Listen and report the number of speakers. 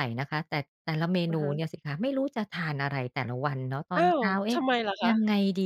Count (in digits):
2